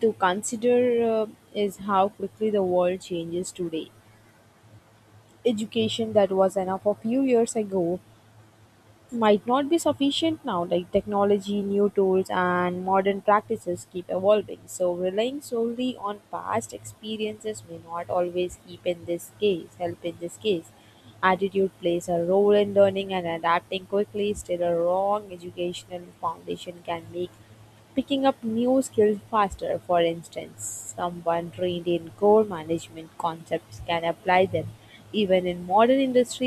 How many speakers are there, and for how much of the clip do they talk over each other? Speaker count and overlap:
1, no overlap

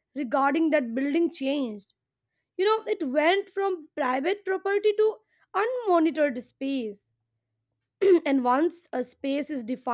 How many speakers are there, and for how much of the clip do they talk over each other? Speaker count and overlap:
1, no overlap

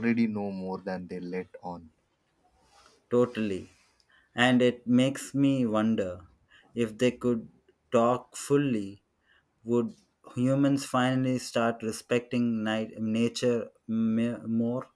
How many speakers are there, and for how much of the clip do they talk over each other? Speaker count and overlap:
2, no overlap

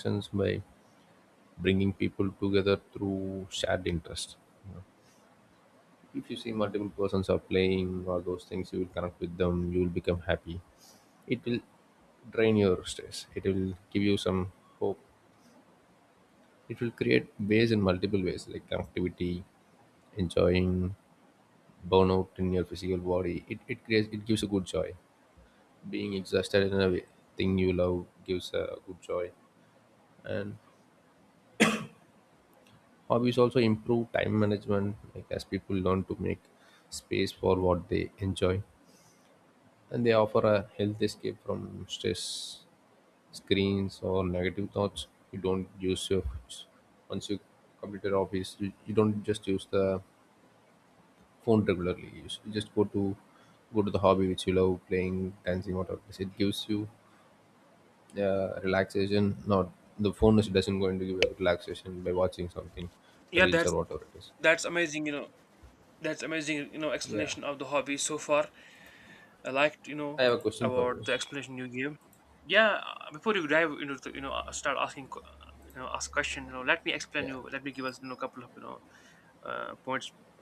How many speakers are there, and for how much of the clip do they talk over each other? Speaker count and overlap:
2, about 2%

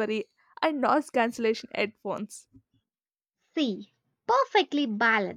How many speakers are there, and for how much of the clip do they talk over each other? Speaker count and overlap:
2, no overlap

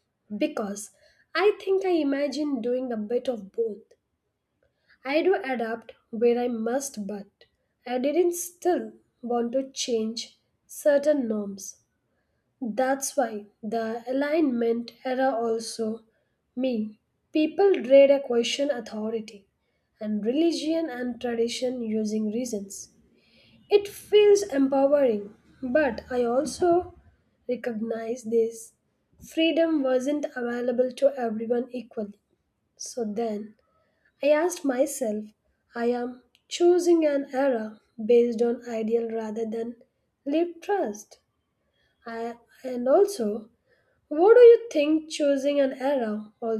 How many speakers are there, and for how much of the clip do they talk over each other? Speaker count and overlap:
1, no overlap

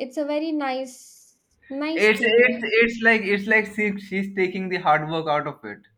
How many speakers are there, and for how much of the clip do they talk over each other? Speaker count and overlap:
2, about 11%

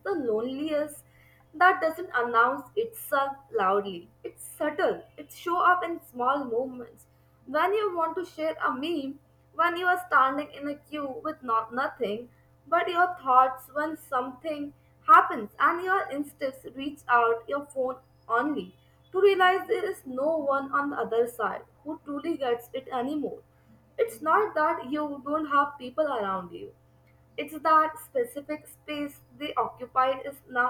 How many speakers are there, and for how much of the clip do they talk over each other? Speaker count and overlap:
1, no overlap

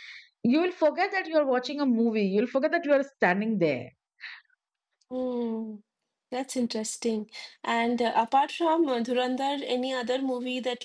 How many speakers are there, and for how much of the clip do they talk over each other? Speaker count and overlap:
2, no overlap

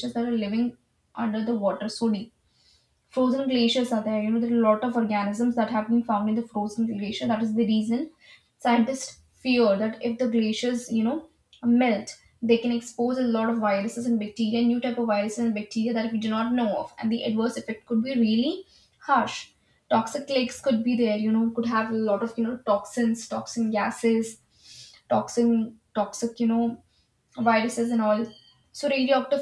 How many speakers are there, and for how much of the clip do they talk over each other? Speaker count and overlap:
1, no overlap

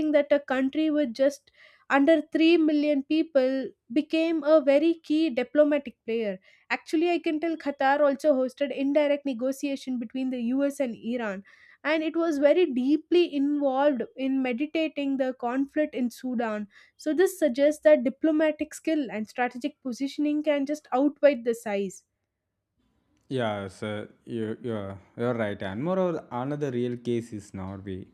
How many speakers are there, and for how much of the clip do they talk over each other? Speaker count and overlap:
2, no overlap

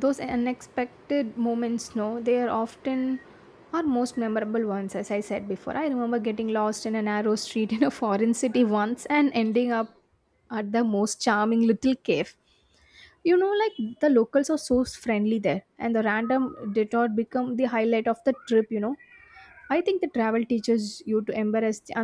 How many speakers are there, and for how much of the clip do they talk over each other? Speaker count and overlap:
1, no overlap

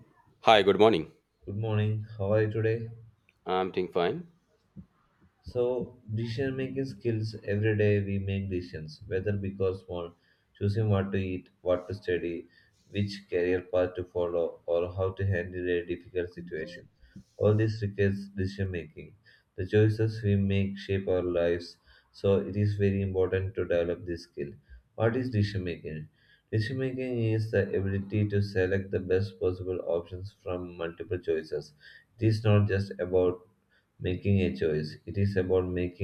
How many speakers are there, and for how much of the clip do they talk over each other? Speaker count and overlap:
2, no overlap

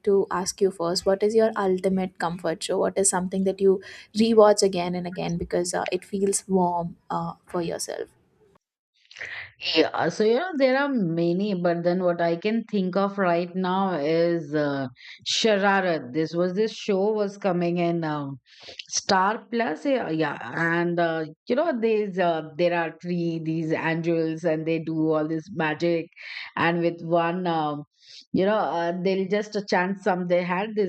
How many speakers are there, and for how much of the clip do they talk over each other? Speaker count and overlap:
2, no overlap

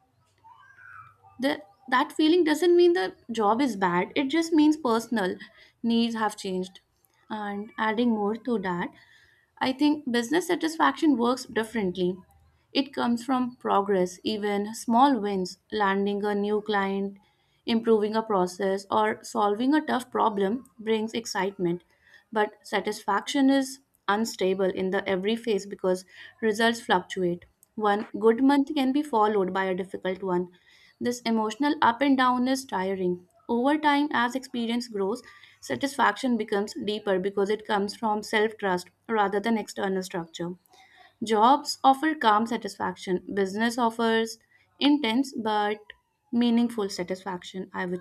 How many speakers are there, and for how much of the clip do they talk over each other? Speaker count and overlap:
1, no overlap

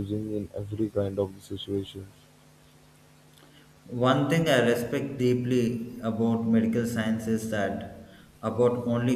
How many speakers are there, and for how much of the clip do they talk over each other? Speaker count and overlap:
2, no overlap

